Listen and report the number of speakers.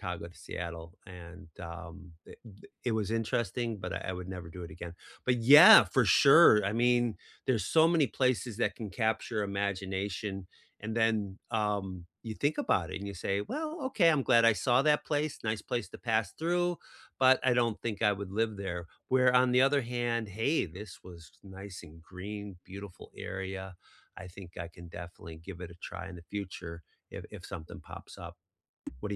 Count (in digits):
1